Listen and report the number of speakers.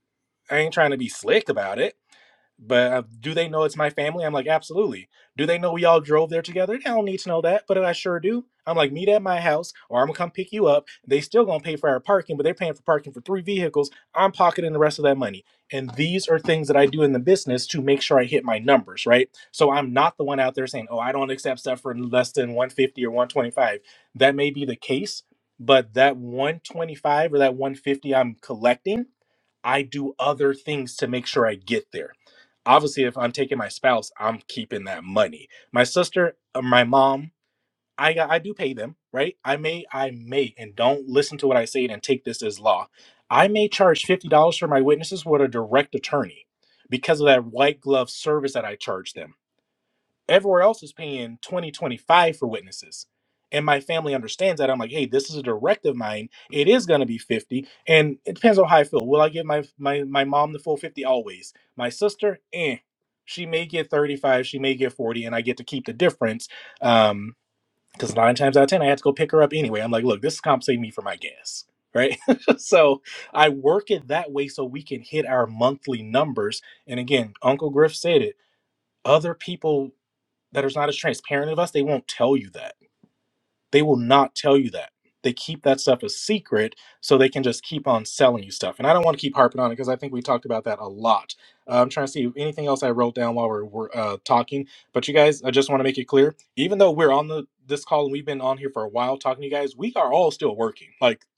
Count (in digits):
1